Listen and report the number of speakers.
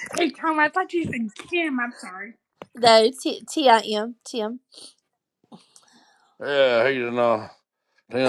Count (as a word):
three